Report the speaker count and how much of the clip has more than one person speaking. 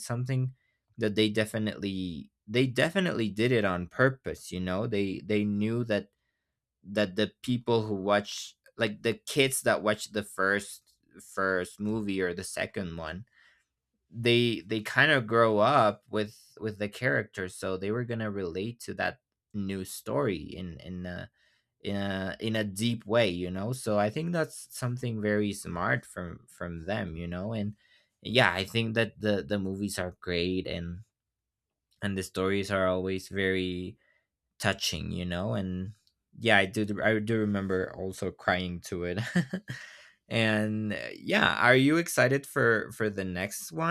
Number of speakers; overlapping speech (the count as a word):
one, no overlap